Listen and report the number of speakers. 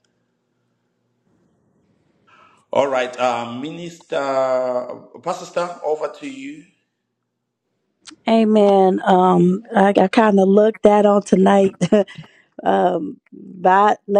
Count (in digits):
2